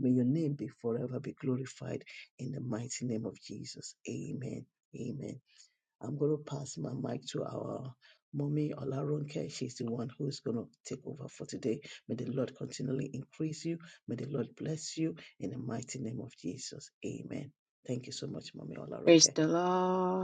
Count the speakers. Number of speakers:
two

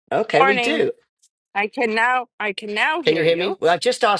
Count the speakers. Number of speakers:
two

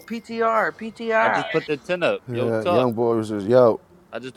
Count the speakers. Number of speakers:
three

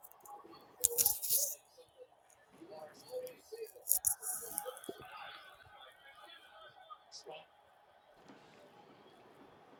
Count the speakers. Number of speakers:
zero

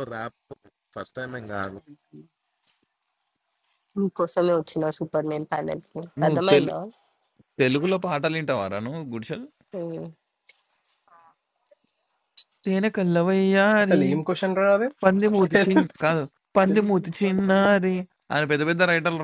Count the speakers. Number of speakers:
four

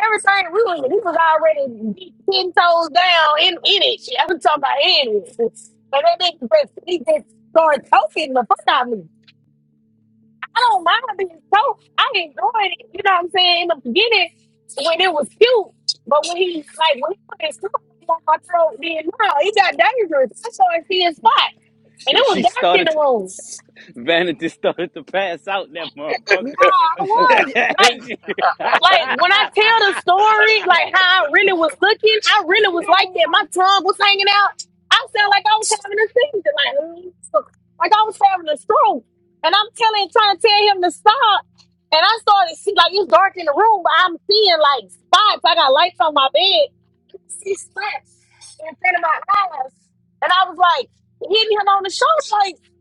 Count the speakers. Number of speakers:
two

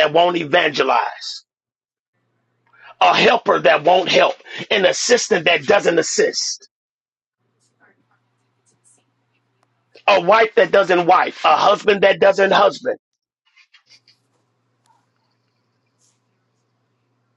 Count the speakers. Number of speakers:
one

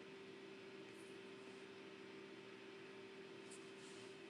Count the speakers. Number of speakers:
zero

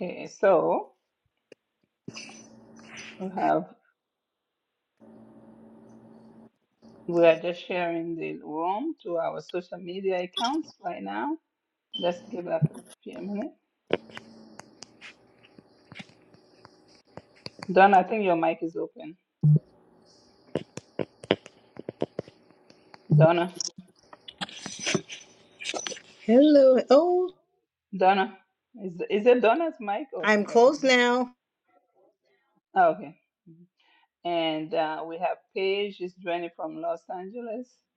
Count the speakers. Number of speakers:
two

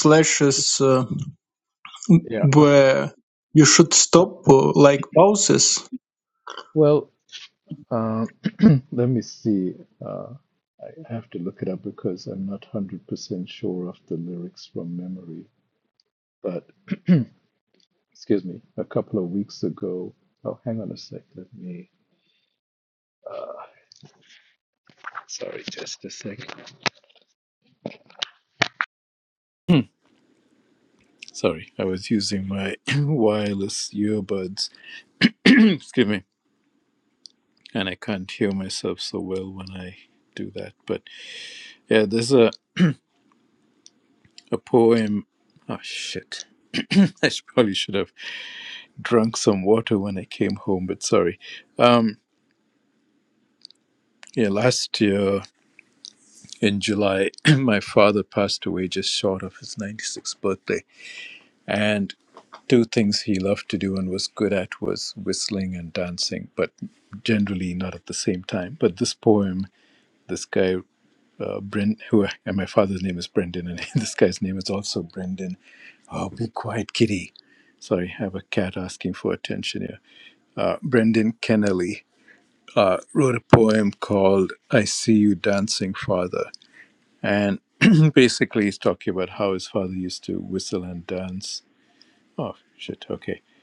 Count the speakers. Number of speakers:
two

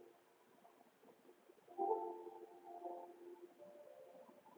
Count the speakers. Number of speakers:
zero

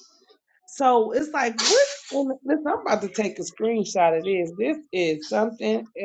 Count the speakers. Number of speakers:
one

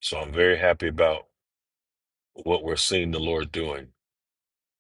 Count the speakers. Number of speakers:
one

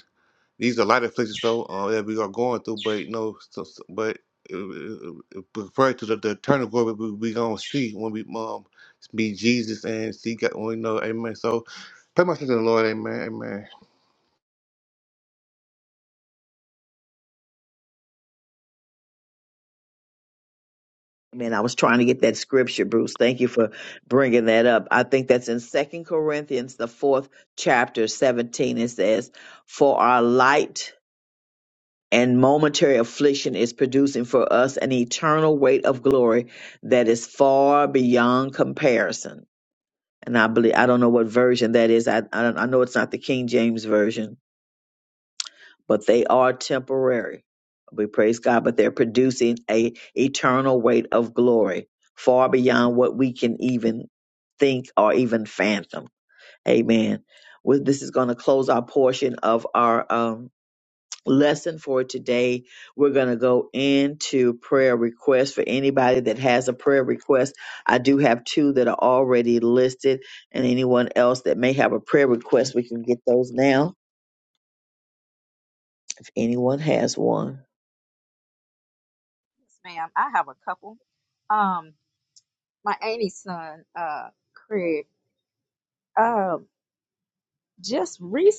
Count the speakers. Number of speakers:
three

